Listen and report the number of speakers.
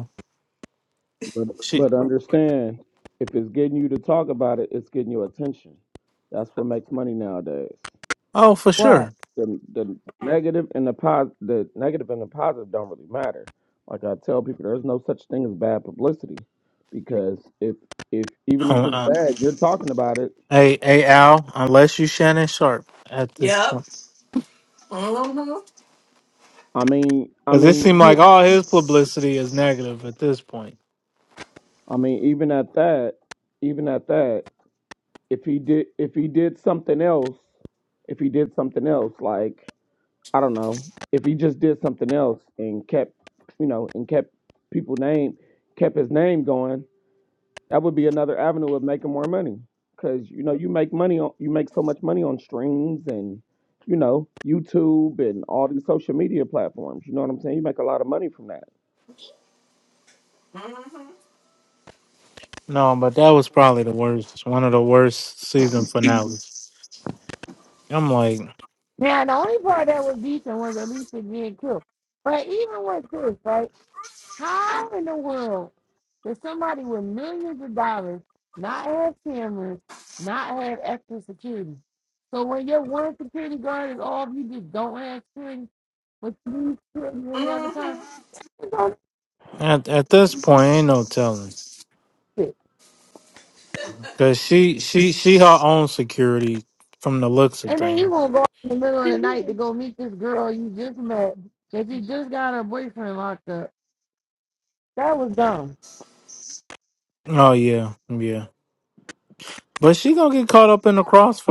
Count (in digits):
4